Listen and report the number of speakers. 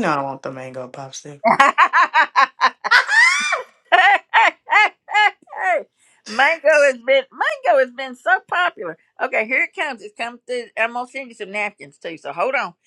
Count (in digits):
2